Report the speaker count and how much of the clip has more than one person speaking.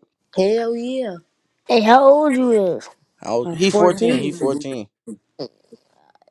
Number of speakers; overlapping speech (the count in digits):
3, about 18%